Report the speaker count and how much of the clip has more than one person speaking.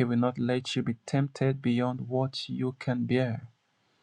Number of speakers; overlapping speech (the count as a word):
one, no overlap